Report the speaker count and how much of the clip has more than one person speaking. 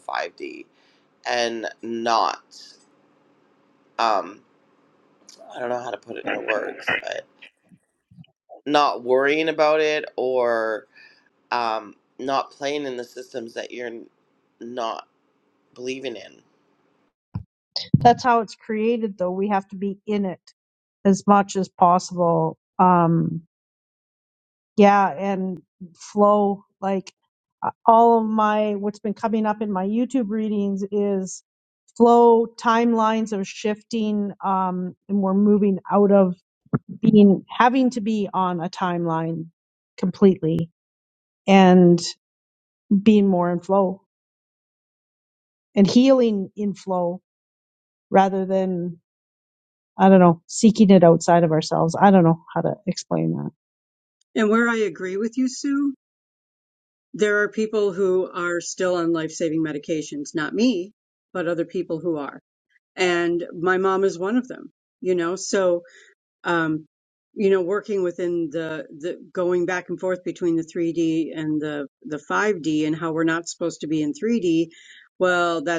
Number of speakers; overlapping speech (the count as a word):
three, no overlap